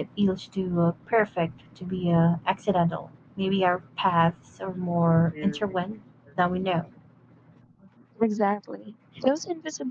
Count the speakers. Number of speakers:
2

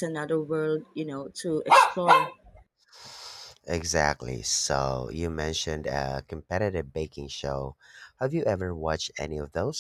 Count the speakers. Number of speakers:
2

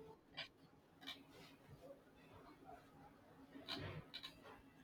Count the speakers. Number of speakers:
0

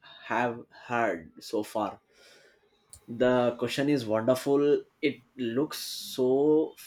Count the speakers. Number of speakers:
1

